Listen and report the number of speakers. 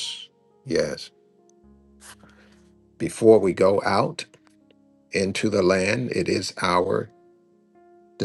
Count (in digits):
1